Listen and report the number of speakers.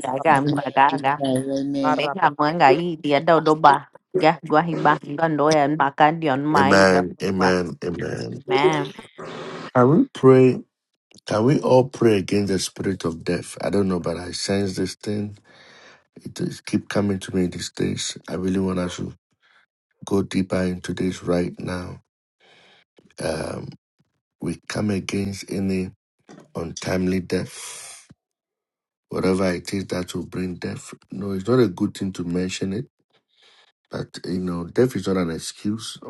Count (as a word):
three